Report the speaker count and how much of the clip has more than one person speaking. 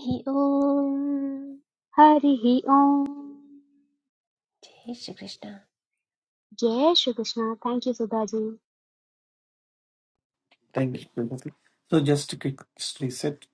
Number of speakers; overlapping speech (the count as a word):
three, no overlap